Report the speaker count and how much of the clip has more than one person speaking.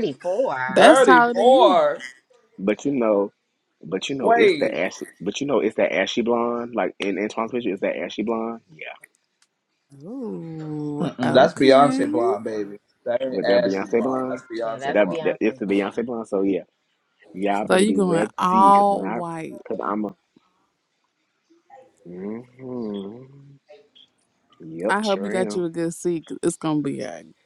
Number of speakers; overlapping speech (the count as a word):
four, about 28%